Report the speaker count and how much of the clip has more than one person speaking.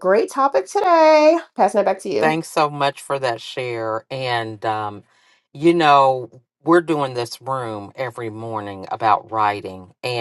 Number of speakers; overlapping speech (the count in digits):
2, about 2%